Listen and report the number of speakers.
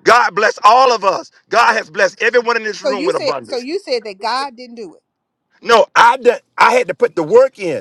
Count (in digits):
2